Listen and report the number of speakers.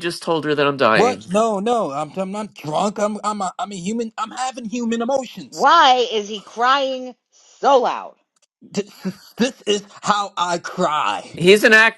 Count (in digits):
3